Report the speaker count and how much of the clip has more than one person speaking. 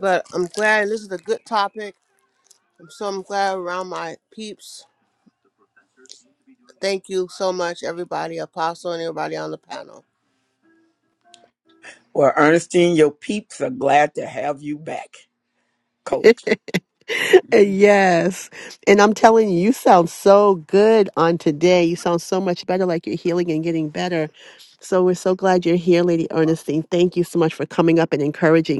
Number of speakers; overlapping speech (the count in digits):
3, no overlap